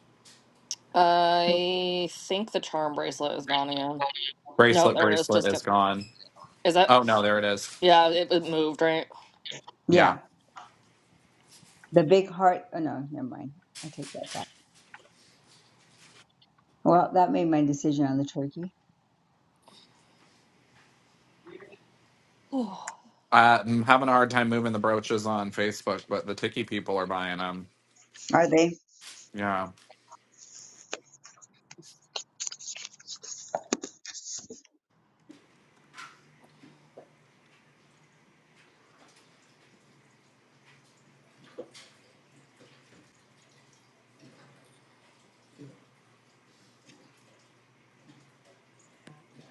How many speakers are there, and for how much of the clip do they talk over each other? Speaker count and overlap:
3, about 2%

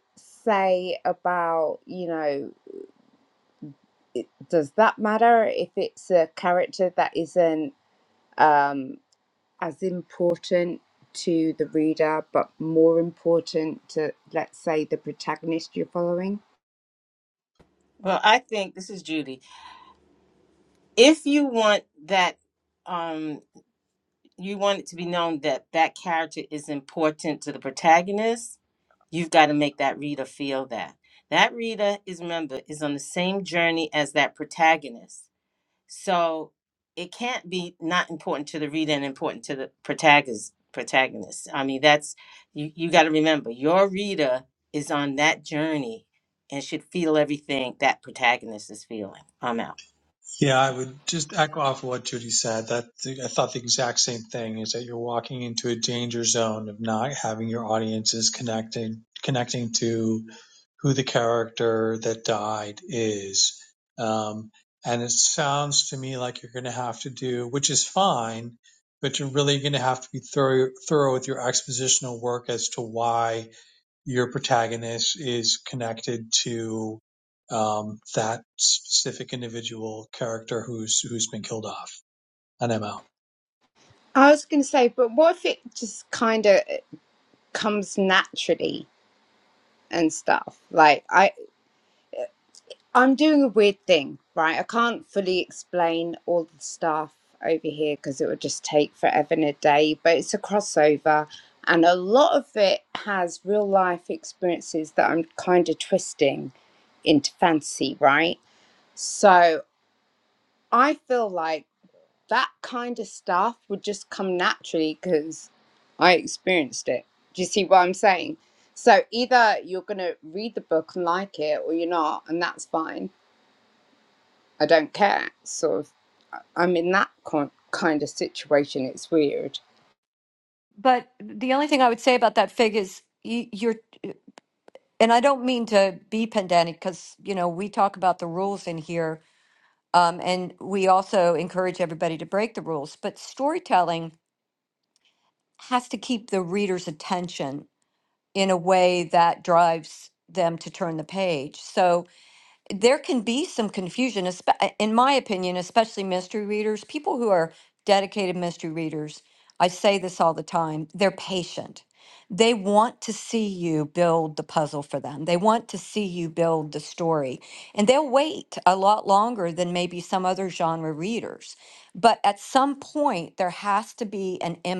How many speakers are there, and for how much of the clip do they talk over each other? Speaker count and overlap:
4, no overlap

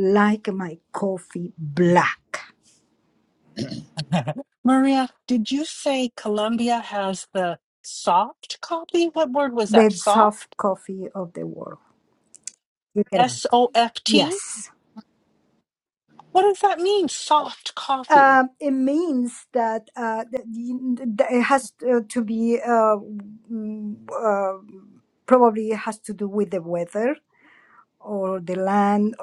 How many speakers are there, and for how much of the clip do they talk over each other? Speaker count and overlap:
2, about 6%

